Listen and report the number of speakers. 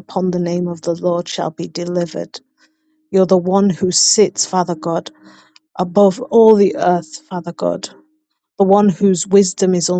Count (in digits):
1